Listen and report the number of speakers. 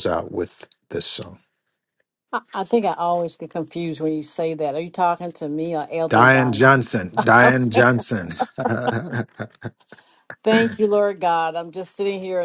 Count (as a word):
two